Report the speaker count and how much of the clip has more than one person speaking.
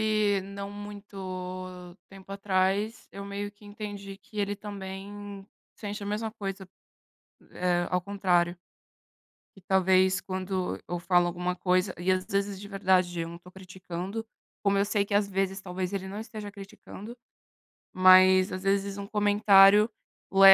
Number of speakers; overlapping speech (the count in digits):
1, no overlap